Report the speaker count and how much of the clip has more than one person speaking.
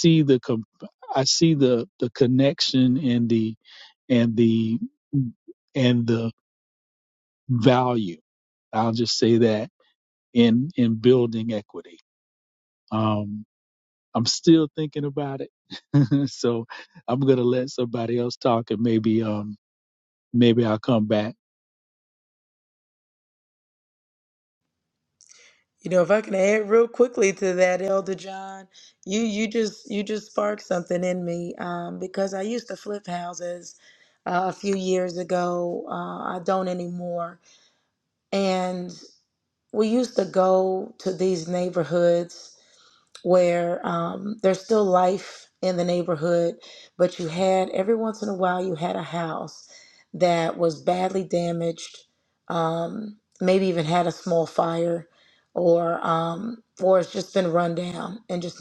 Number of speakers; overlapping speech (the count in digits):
2, no overlap